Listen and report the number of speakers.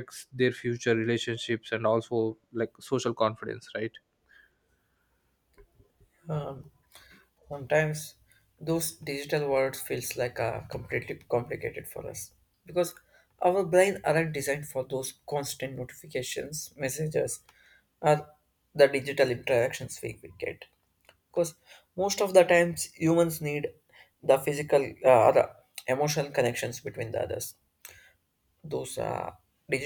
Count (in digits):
2